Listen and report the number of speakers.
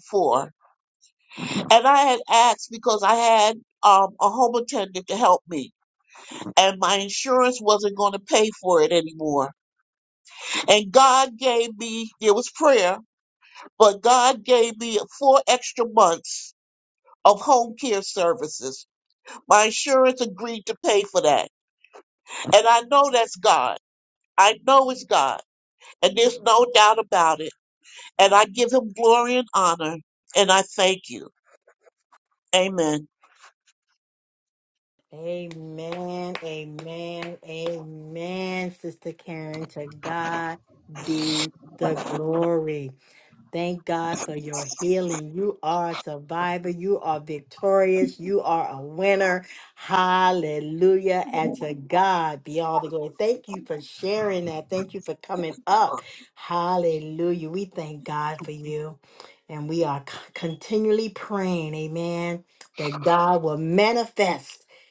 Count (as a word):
two